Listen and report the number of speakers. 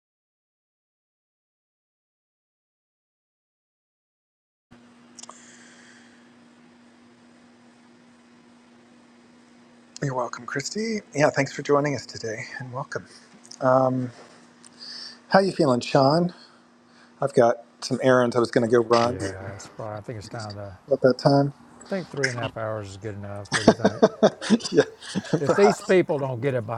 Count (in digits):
2